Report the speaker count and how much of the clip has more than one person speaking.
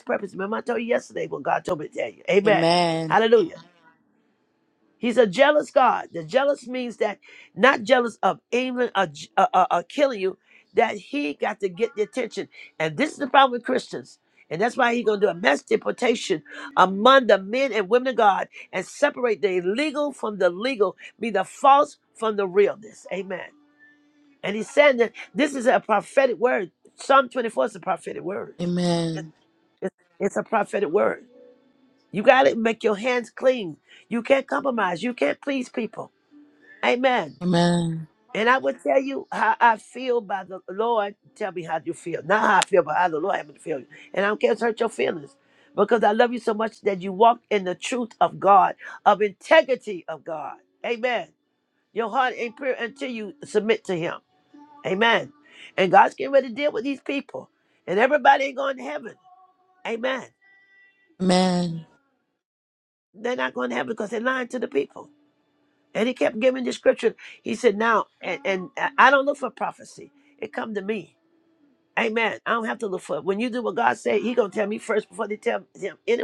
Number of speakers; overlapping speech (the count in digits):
2, under 1%